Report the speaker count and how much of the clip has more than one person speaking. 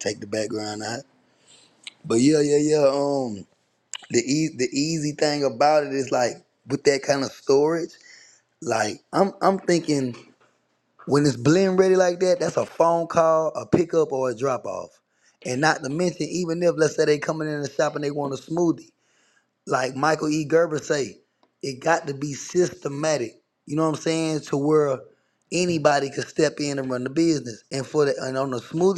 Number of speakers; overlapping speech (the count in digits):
1, no overlap